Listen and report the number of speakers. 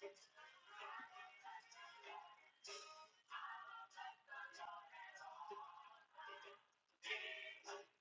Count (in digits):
0